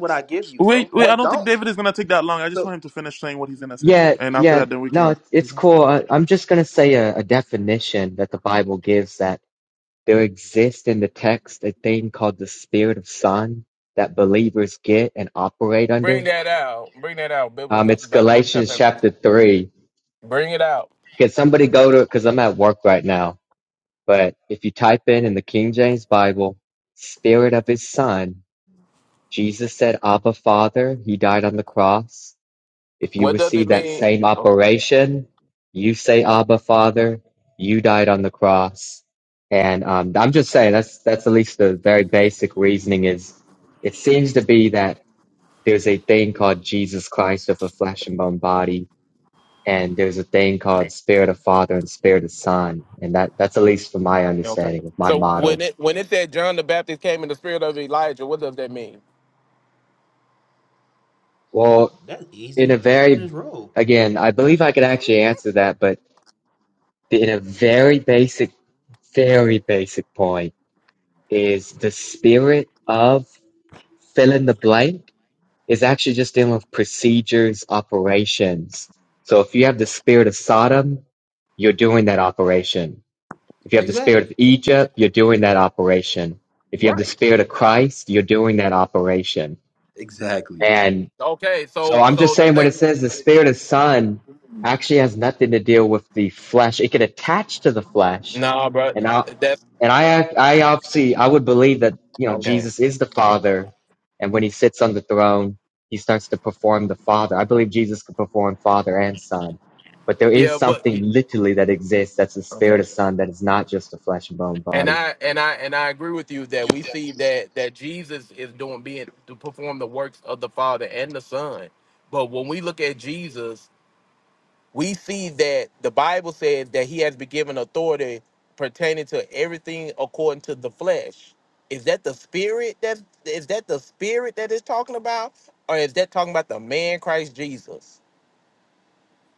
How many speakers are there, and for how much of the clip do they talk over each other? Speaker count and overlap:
4, about 7%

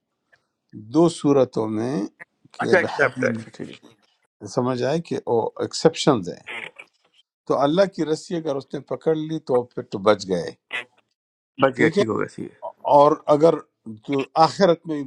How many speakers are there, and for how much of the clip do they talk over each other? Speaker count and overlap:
2, about 7%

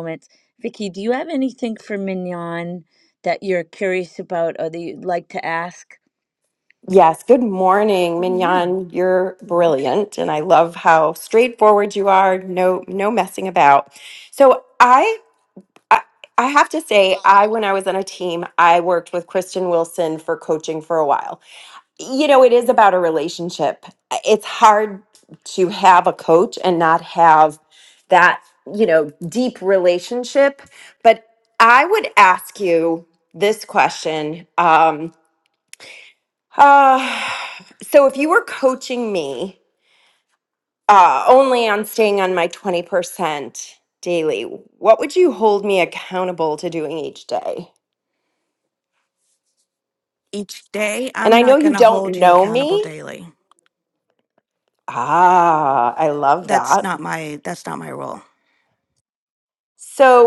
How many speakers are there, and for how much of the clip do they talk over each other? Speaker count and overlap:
3, about 5%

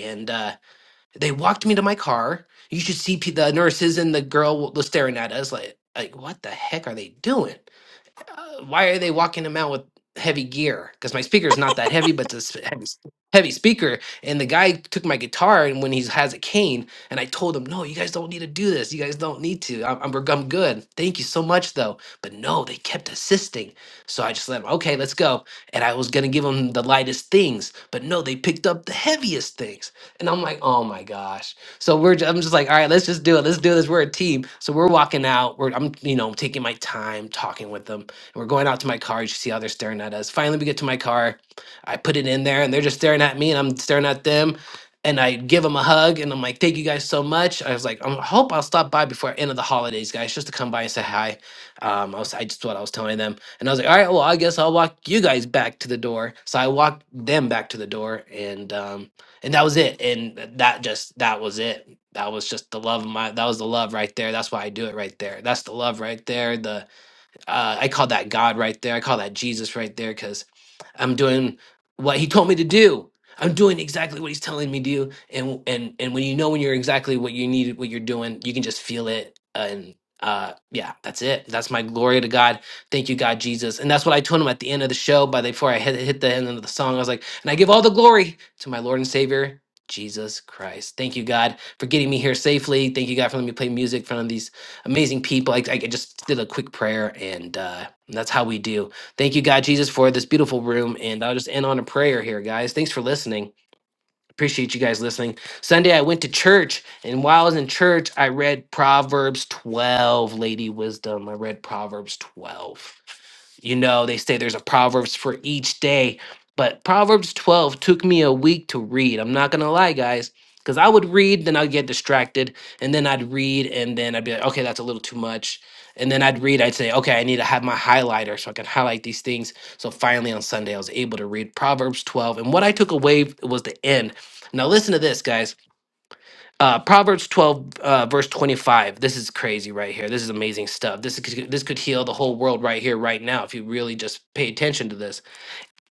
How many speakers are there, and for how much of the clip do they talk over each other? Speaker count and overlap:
1, no overlap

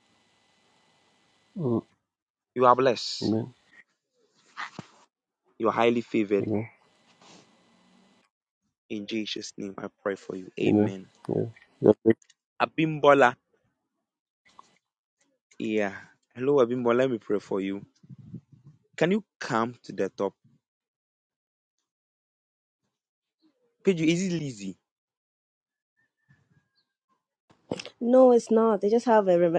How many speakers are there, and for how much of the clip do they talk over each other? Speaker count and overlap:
3, about 1%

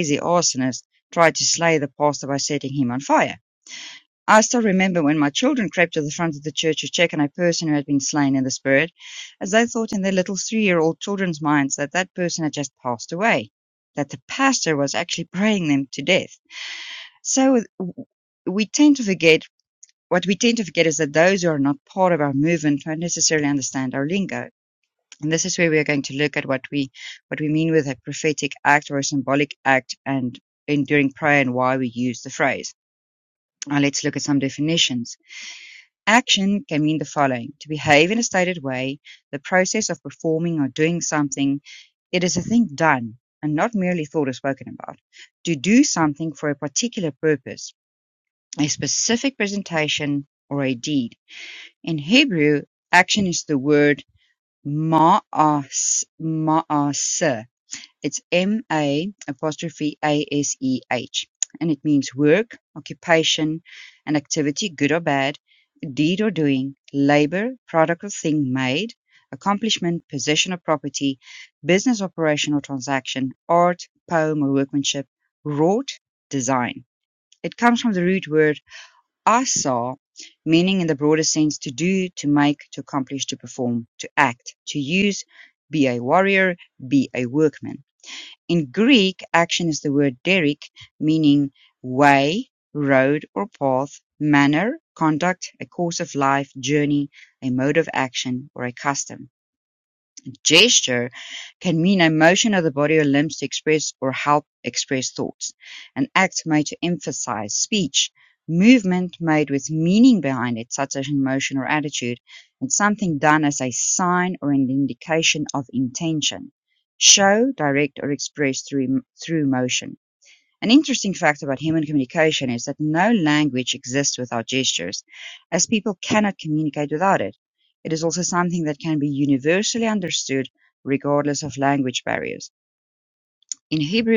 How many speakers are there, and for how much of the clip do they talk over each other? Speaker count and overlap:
1, no overlap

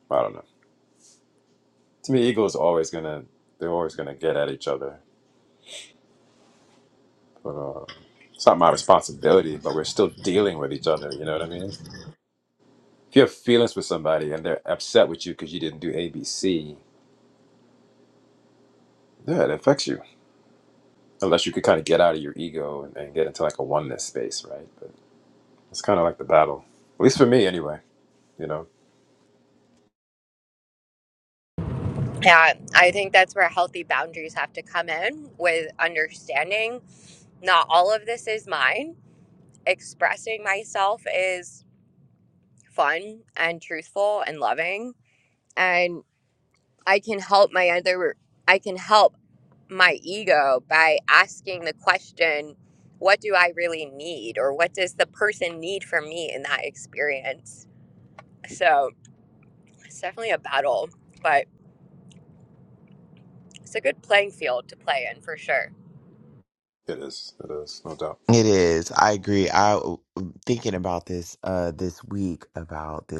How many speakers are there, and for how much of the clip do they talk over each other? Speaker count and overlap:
3, no overlap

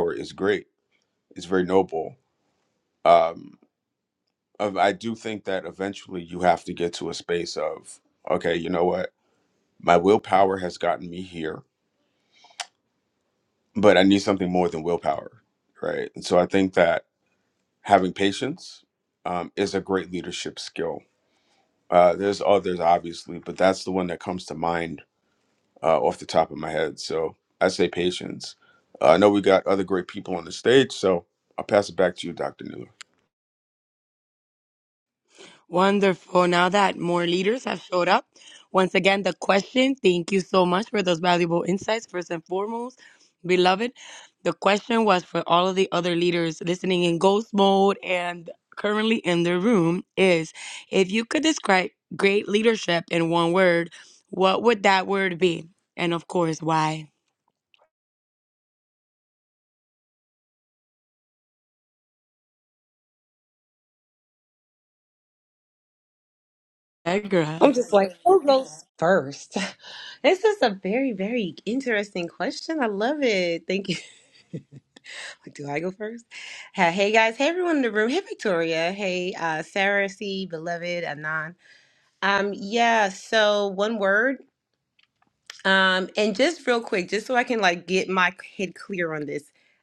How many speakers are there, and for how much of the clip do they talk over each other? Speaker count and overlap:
3, under 1%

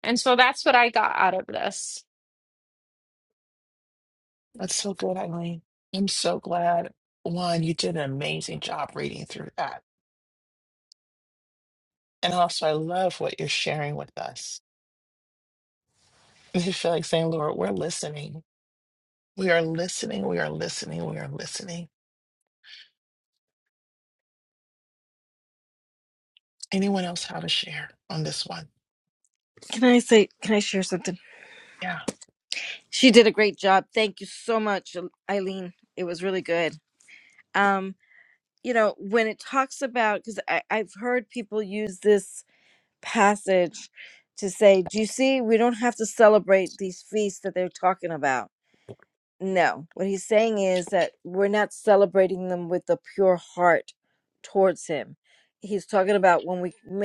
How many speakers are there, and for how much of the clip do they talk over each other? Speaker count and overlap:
3, no overlap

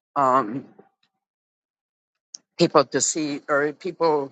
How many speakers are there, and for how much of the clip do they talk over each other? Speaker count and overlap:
1, no overlap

